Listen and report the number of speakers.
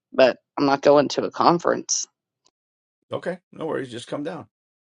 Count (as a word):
two